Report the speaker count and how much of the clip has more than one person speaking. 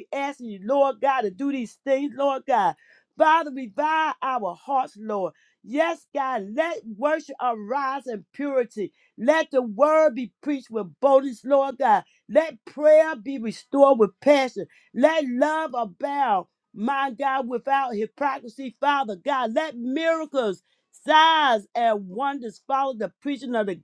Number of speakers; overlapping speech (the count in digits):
1, no overlap